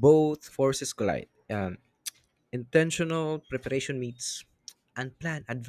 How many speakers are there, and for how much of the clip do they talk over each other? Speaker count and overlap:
one, no overlap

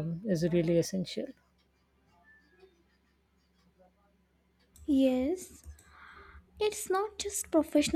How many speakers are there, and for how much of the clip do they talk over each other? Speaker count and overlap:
two, no overlap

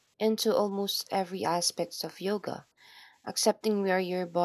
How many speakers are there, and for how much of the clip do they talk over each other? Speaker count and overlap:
one, no overlap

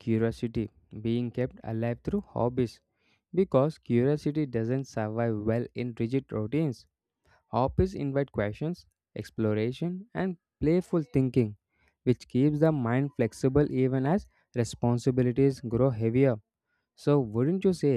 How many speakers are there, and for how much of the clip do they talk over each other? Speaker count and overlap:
one, no overlap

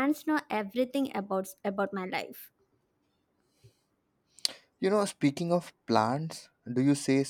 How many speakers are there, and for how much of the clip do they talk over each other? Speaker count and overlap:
two, no overlap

